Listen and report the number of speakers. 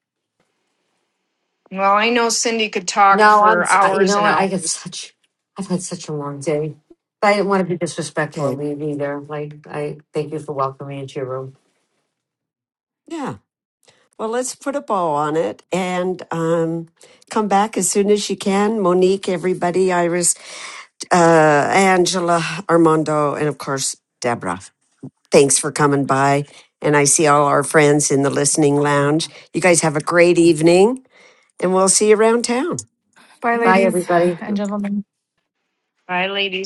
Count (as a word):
four